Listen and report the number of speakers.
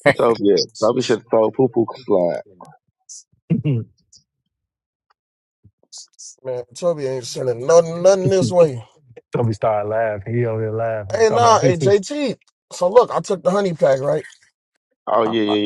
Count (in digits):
3